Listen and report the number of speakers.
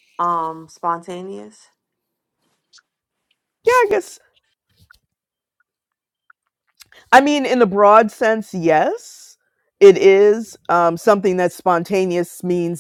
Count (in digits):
2